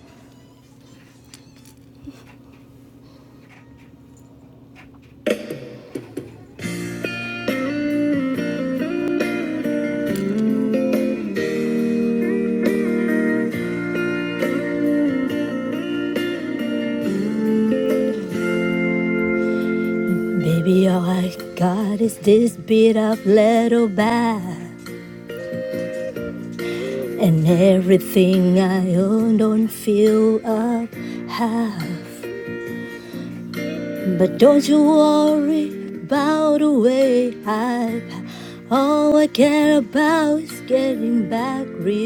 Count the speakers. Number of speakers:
1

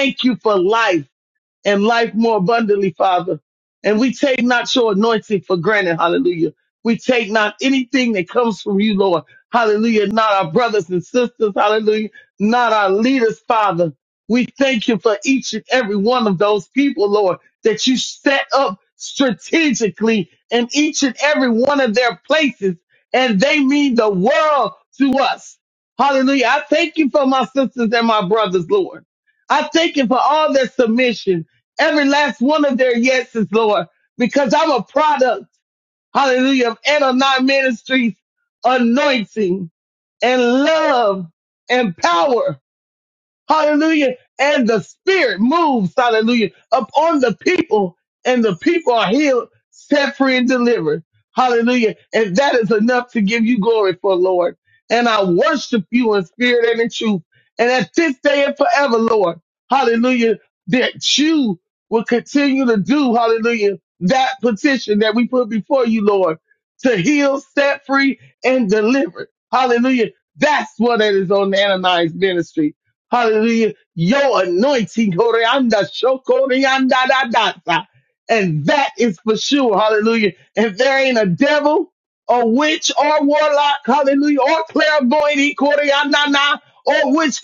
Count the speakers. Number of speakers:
1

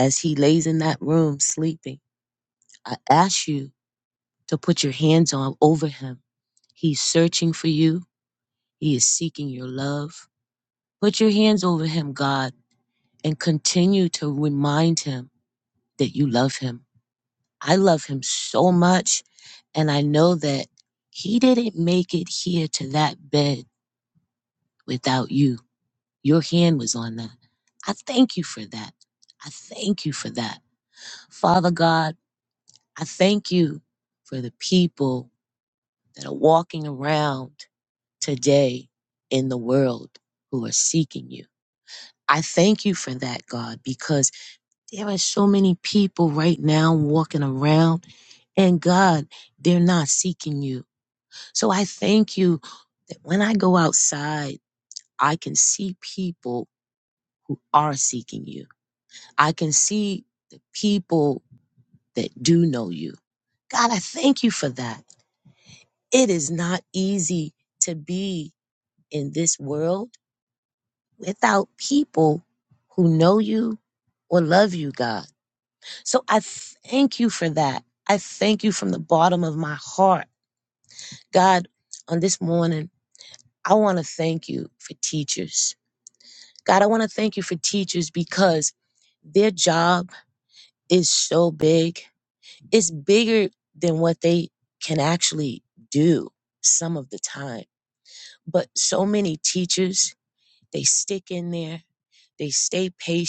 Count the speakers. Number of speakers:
1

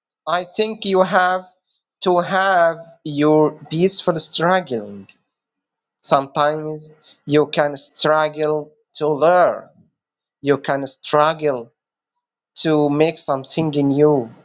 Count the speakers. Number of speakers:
1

